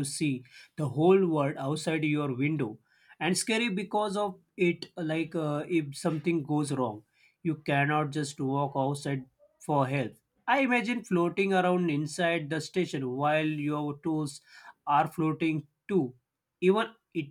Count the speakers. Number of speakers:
1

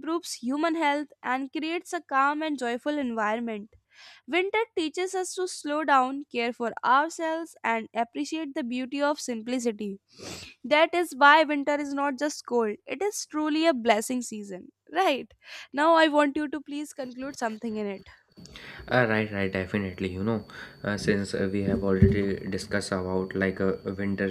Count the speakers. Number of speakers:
2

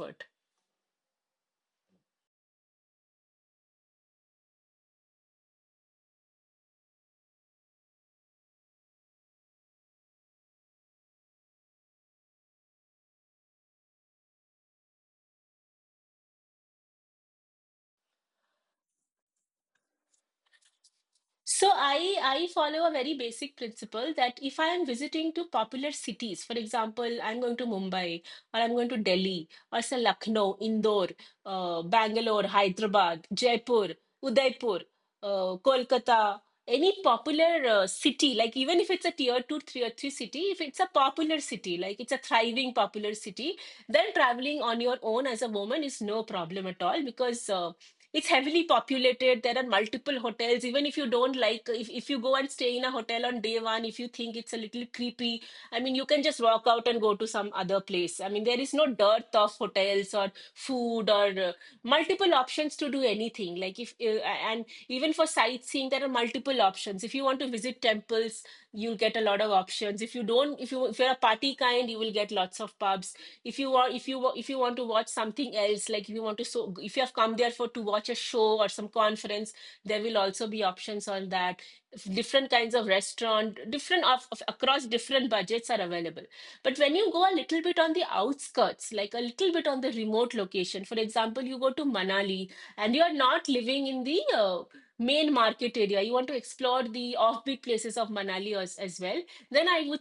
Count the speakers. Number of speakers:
1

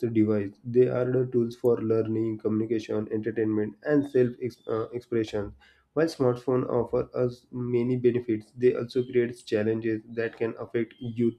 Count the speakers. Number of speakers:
1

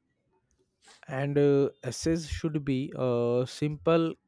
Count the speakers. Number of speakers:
1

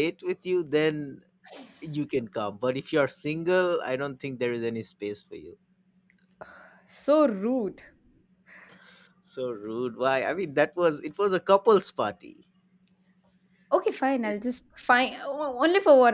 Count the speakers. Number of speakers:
2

